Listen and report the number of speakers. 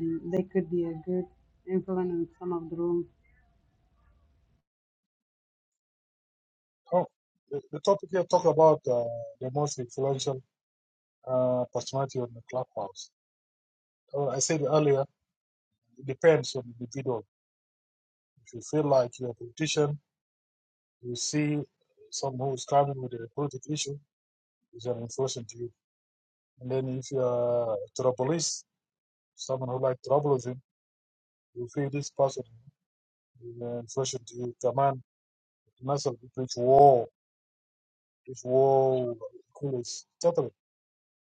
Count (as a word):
two